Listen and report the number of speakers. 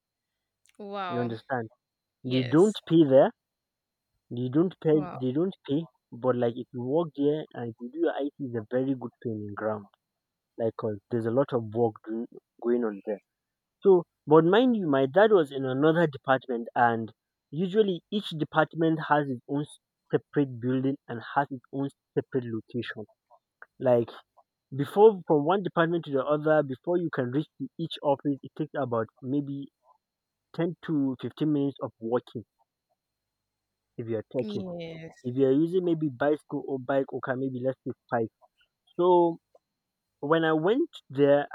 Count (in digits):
2